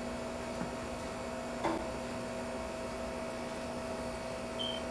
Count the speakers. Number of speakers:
0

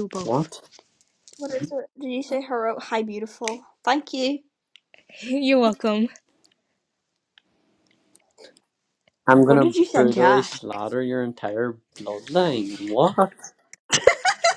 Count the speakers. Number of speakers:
3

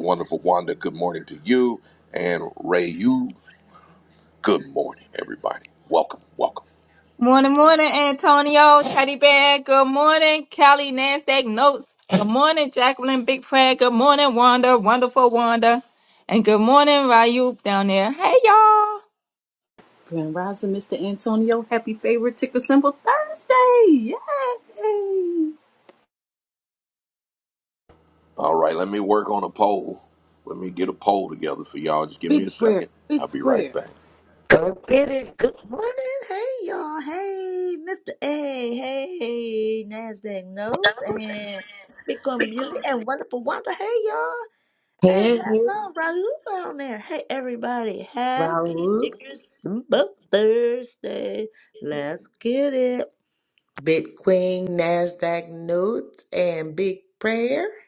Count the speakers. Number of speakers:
5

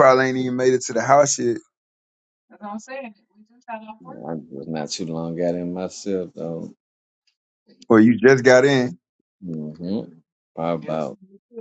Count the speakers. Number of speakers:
3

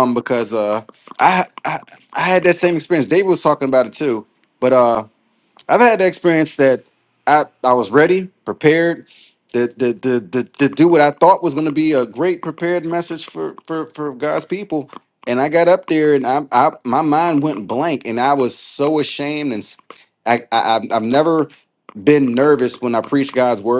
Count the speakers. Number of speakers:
1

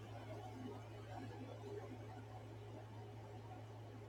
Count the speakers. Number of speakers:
0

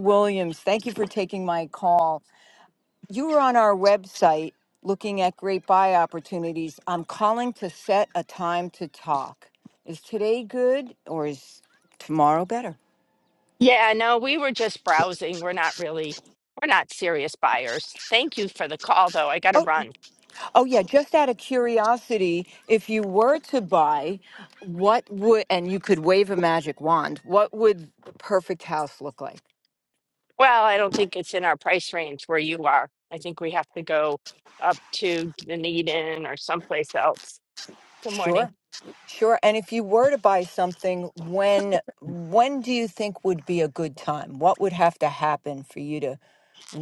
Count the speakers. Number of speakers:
2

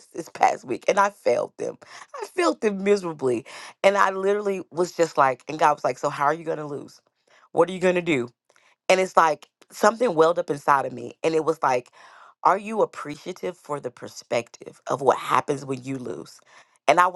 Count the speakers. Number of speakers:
1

